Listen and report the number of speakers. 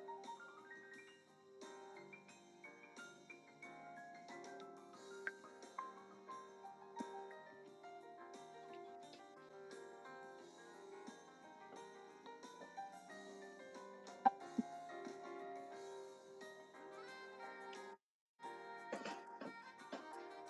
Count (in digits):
0